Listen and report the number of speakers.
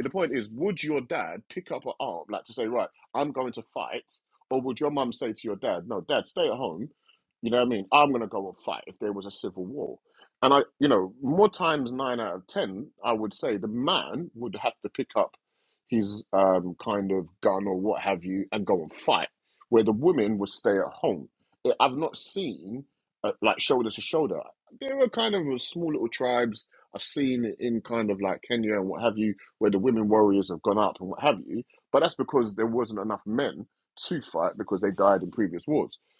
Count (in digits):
1